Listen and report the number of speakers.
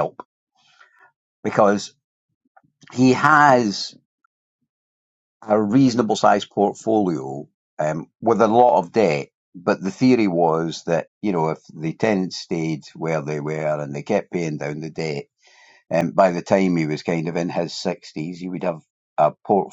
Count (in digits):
1